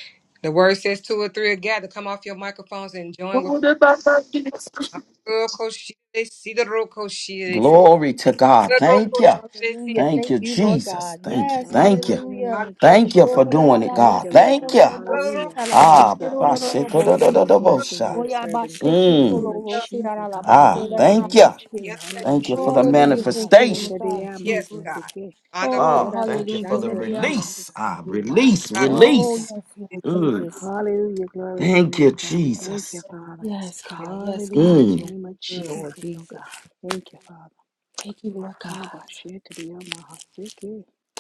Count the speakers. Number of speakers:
five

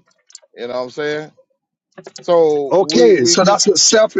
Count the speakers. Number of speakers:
two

